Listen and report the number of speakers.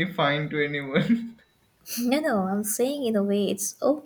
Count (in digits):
2